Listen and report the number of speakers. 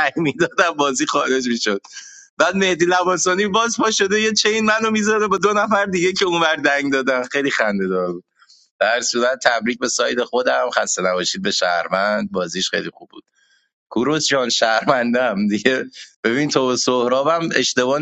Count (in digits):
1